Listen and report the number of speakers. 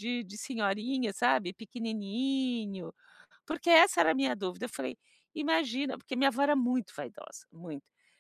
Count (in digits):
1